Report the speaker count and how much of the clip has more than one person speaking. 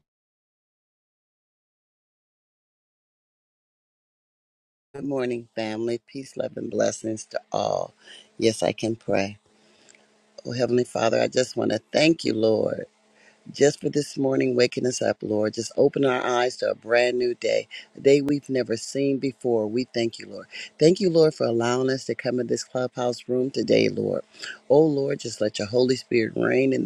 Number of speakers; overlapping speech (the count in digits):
1, no overlap